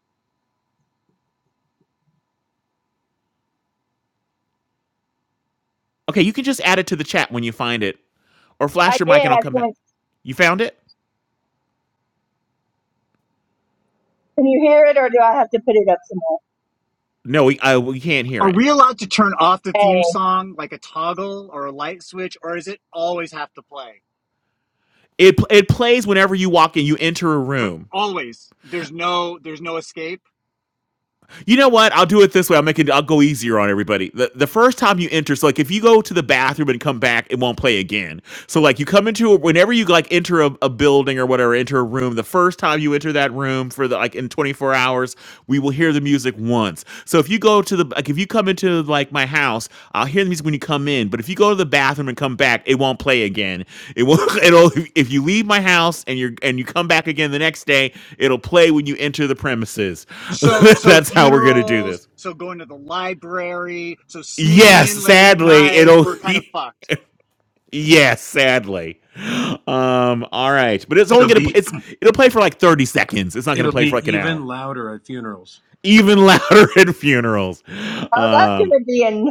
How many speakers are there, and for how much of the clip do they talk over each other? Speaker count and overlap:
4, about 8%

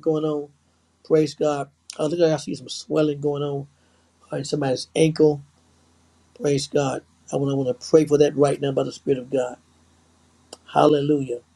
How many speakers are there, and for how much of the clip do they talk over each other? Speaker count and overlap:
1, no overlap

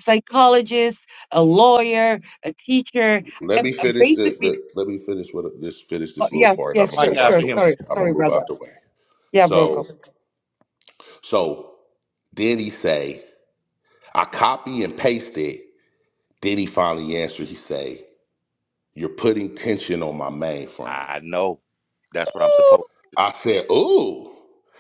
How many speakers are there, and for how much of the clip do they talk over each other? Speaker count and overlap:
3, about 15%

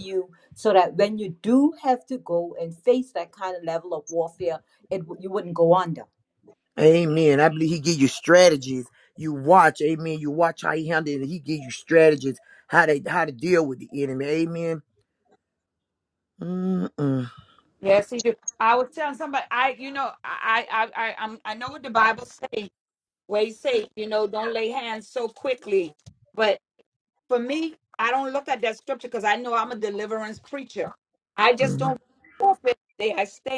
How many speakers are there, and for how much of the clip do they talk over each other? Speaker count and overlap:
3, no overlap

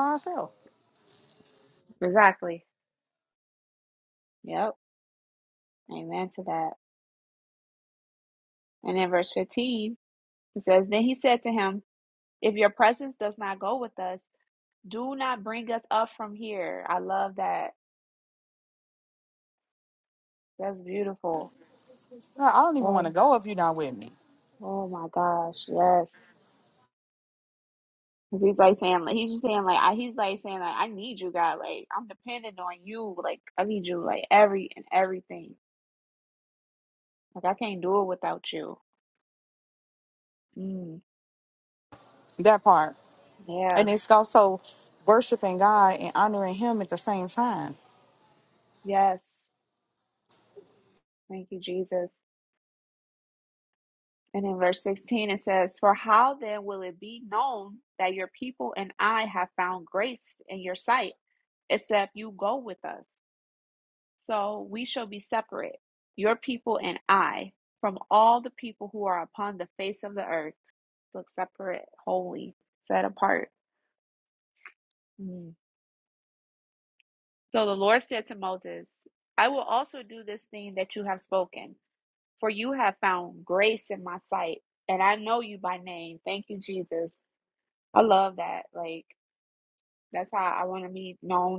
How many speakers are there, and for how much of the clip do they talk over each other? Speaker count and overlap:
2, about 1%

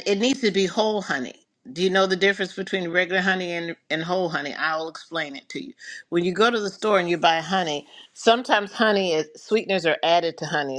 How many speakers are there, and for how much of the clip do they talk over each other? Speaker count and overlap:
1, no overlap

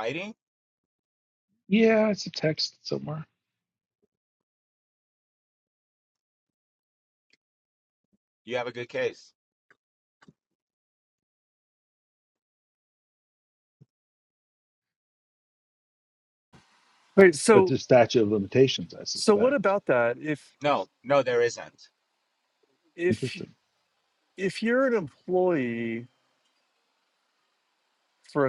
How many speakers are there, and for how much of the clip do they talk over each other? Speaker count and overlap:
3, about 3%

